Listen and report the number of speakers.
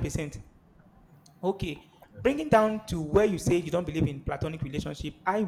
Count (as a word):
one